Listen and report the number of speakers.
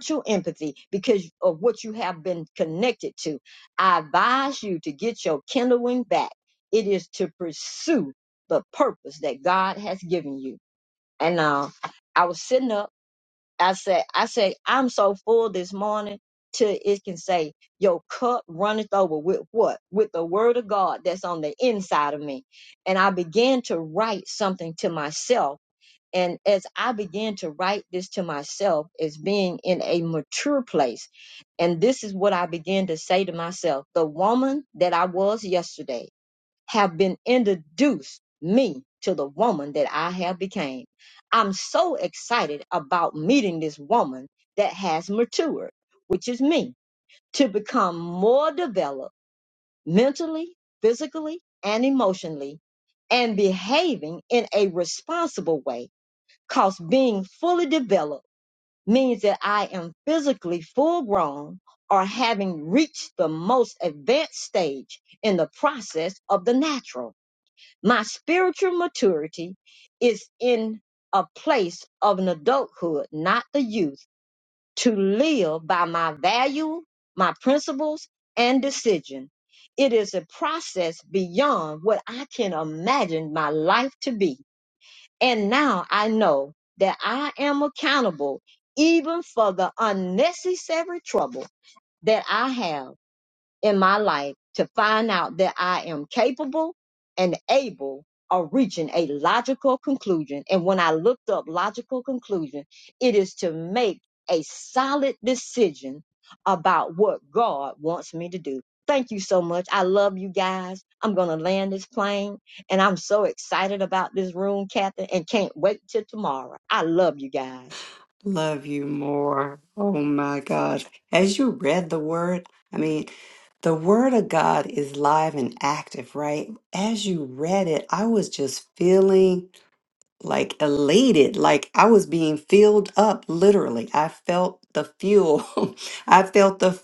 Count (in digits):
2